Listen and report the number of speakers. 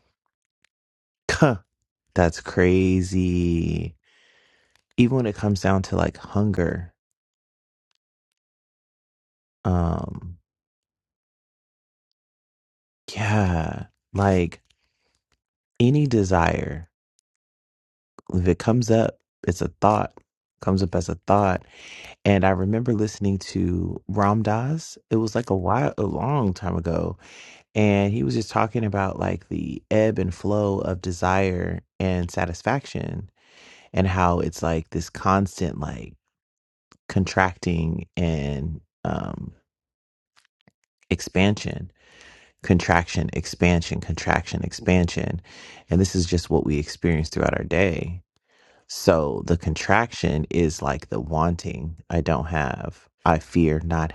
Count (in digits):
1